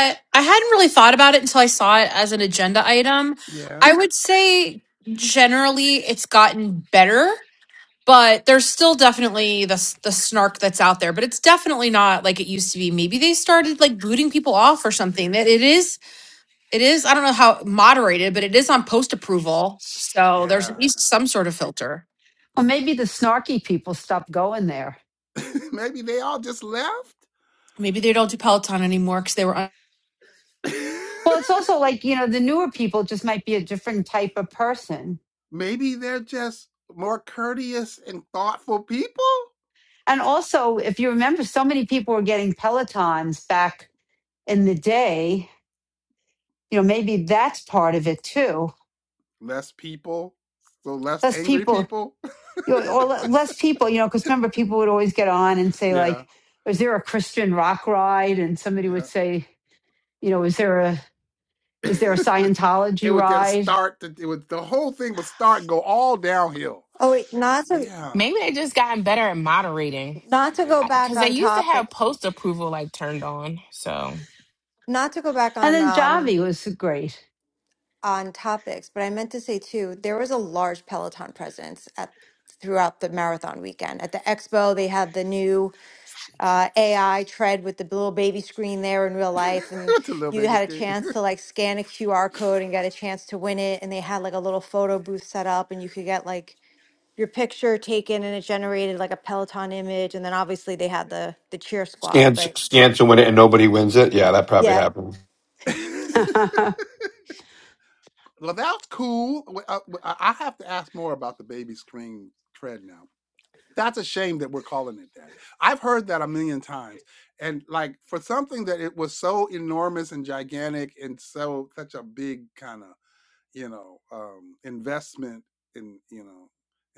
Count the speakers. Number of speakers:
6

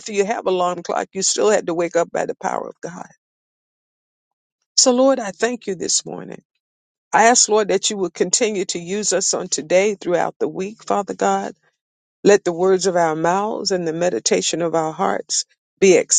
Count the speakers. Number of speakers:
1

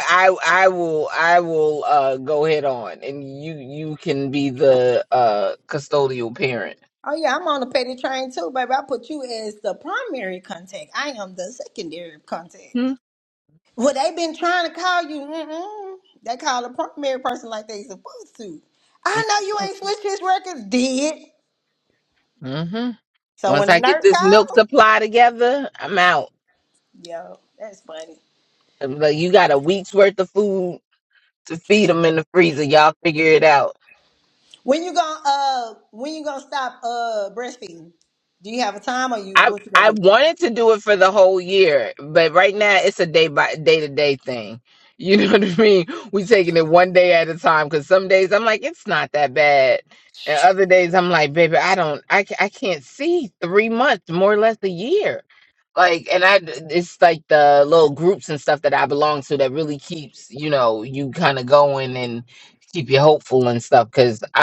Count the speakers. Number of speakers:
2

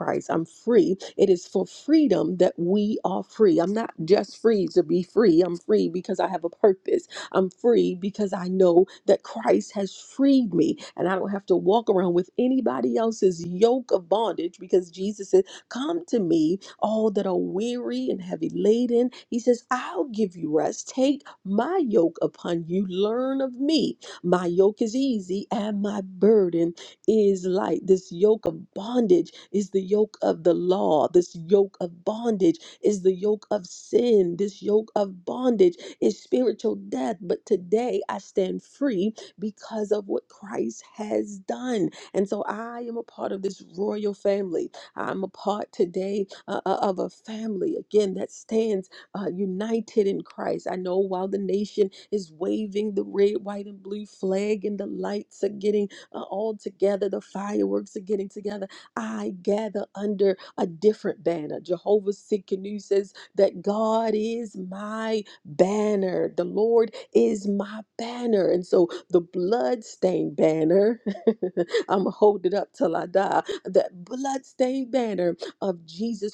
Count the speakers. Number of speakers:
1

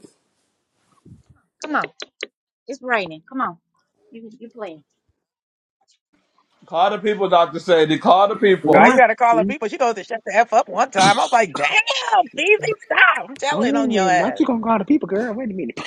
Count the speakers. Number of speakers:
4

